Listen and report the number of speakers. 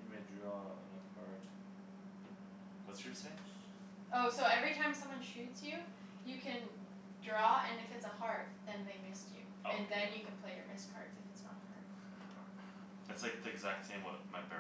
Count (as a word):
three